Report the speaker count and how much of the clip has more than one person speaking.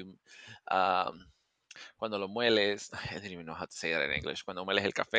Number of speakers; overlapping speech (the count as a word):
one, no overlap